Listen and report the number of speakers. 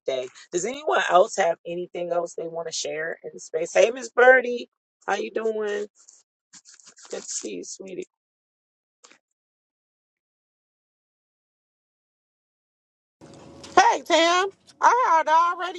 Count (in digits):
2